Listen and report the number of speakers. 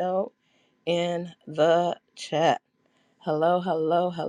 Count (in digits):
1